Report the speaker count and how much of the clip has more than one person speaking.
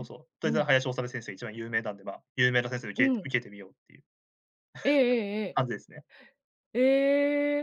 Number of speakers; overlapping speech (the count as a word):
two, about 7%